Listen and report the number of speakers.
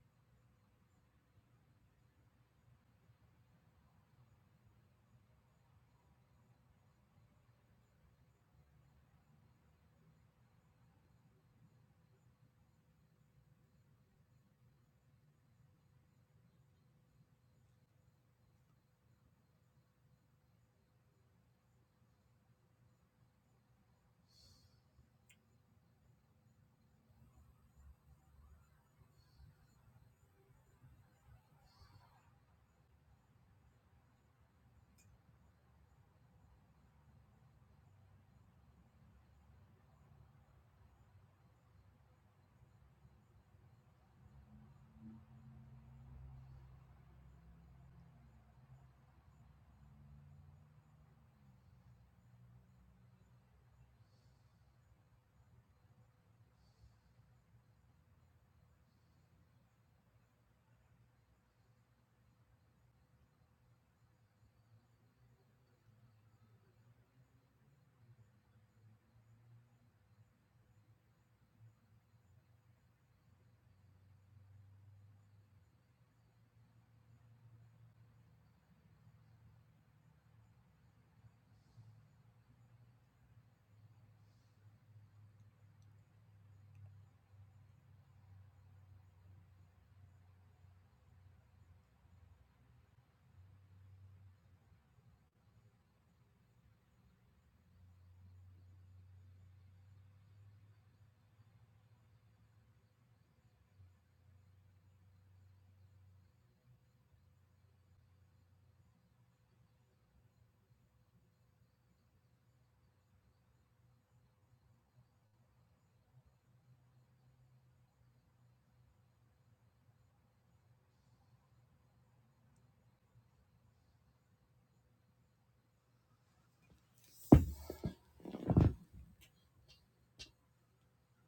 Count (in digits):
0